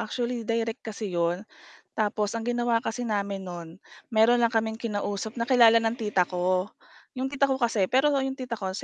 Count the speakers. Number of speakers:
1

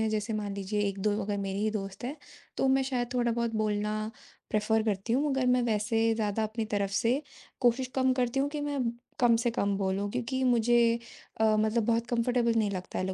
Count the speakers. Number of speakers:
1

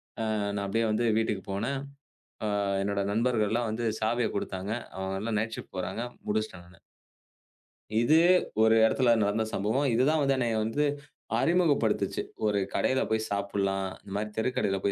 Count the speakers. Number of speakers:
1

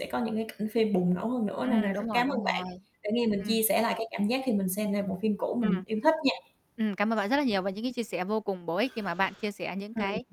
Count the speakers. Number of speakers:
2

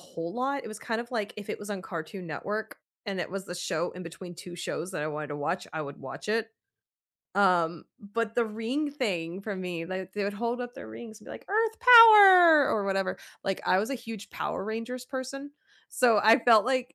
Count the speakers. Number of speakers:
1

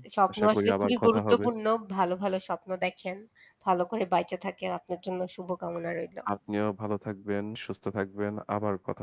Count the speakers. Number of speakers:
2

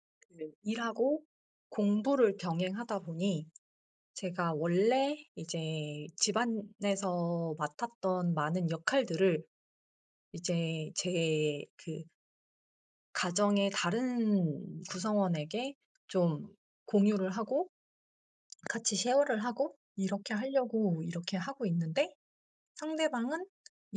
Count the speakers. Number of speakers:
1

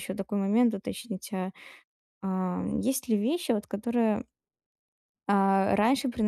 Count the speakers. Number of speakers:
1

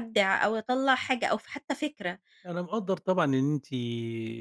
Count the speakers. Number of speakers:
2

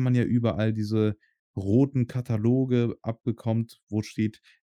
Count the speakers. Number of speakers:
1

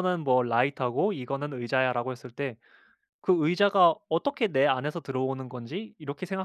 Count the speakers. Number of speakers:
1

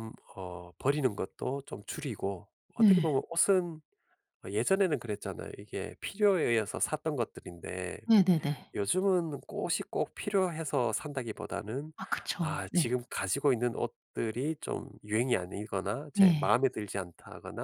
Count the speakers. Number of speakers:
2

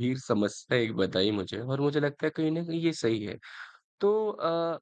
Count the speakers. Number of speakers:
1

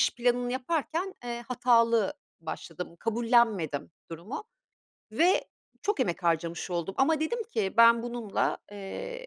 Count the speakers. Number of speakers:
1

